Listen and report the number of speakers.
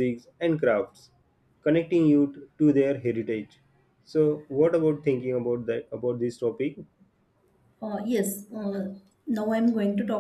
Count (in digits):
2